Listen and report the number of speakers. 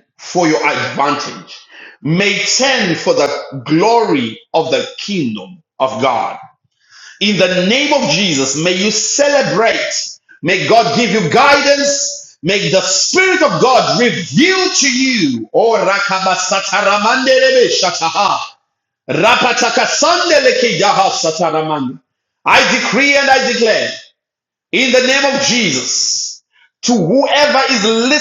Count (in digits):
1